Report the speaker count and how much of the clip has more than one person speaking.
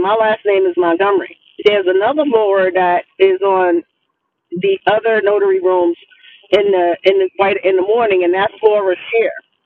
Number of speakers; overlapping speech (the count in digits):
1, no overlap